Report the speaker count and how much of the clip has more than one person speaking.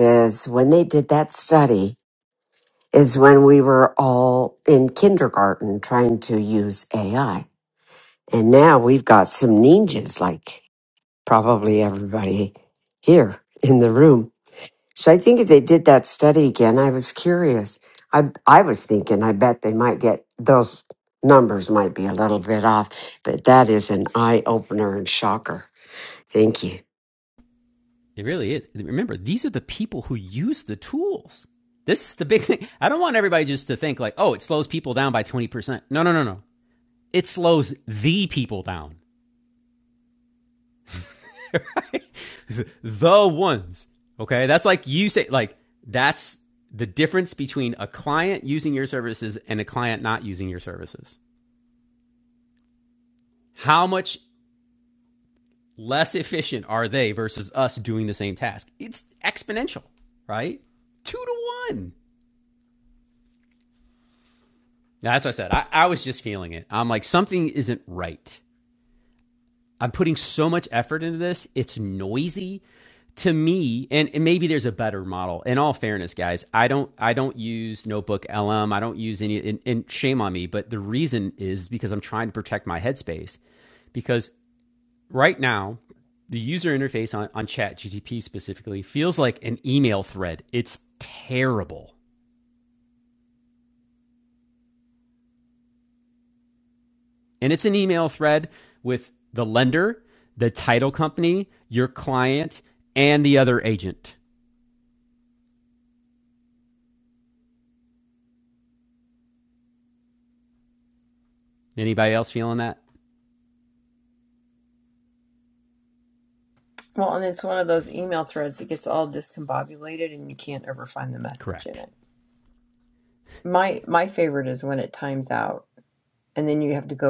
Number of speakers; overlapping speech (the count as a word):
three, under 1%